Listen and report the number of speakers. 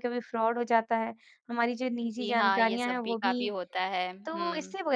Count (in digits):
2